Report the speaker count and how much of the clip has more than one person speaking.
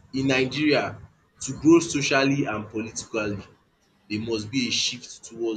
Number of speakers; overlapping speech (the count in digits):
1, no overlap